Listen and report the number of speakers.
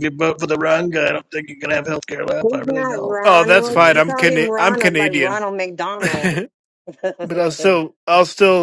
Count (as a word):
three